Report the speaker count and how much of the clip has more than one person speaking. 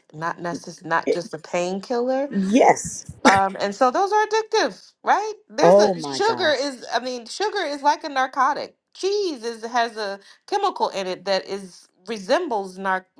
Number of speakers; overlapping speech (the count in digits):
2, about 9%